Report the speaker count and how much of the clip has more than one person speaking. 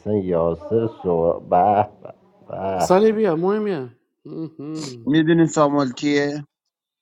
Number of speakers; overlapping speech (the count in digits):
3, about 3%